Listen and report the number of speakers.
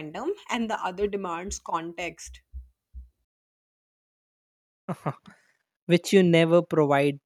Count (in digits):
2